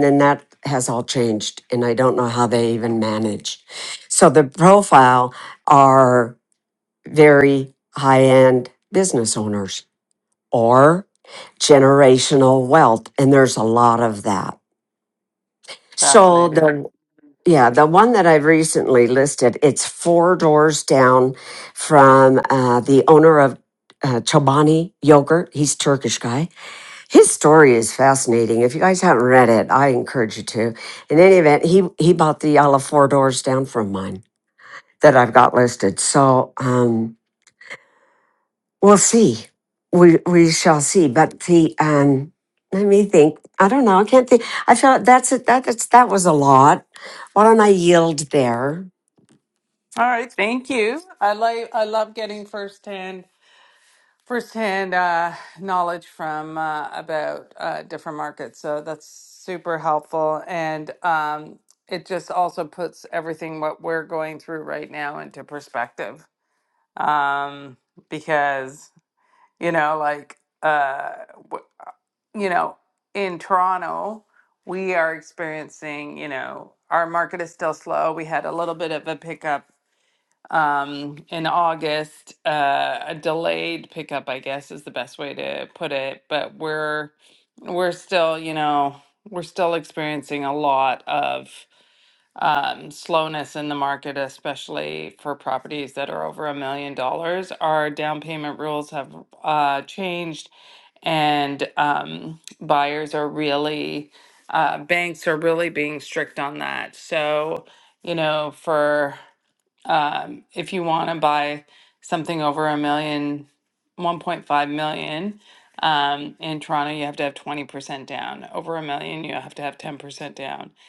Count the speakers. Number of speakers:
two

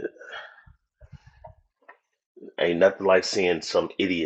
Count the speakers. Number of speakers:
one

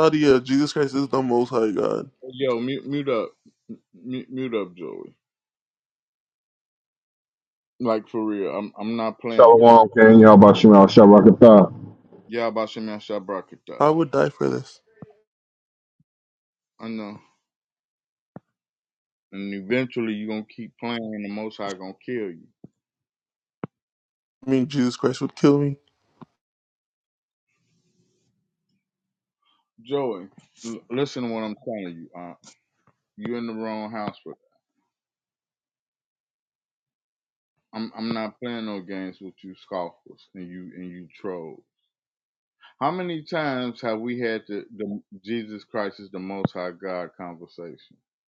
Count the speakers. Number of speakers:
three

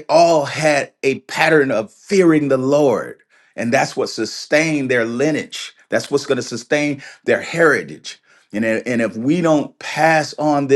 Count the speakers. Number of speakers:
one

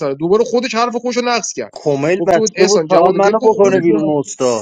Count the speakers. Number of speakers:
two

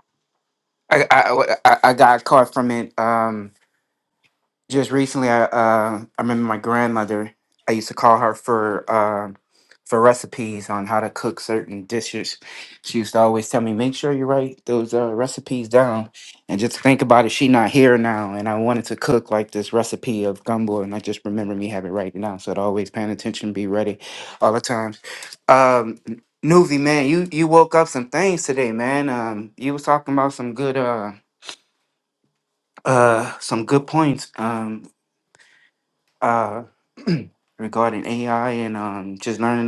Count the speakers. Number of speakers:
one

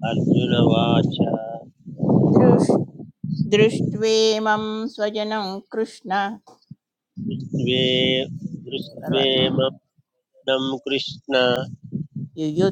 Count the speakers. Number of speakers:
two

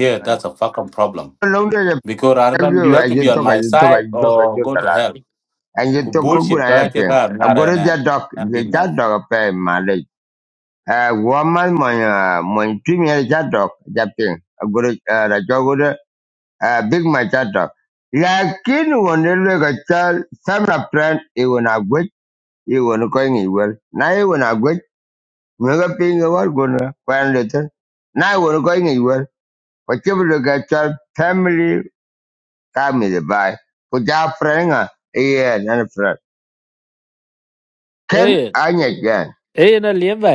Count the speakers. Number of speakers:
three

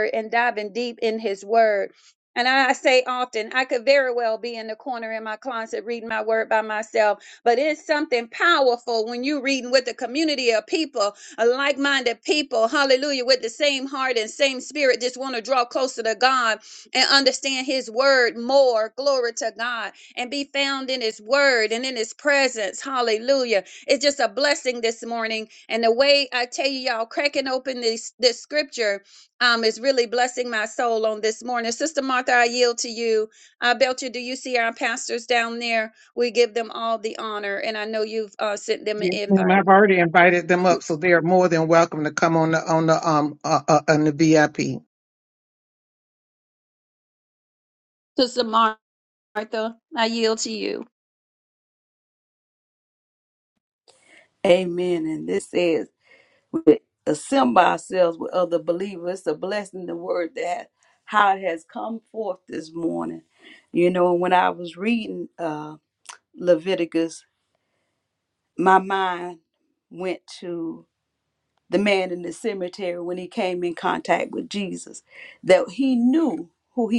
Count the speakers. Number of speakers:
three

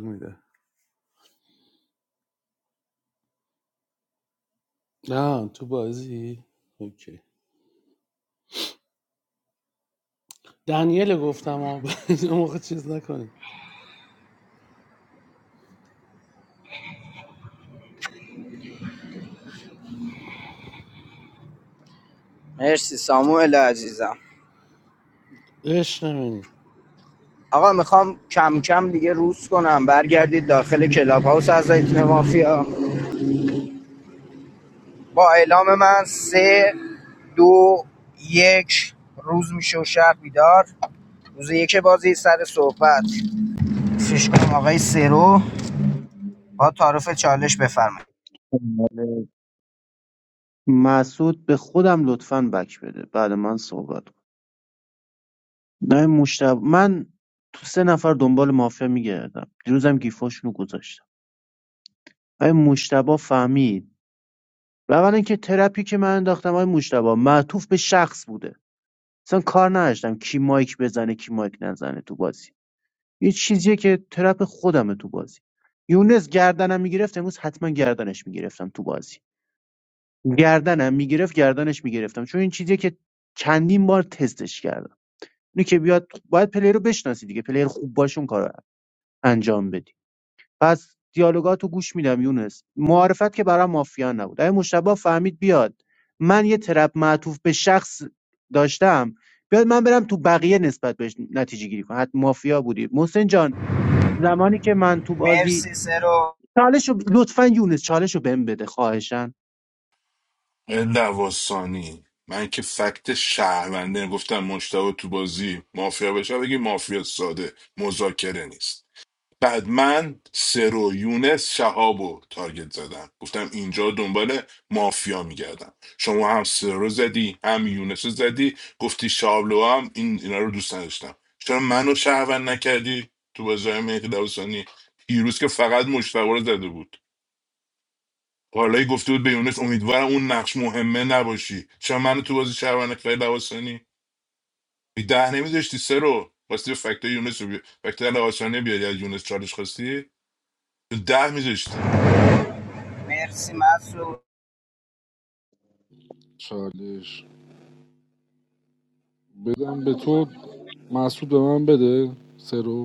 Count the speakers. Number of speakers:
five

